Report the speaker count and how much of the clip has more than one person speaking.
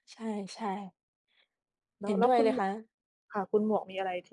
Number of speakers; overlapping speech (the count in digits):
2, about 12%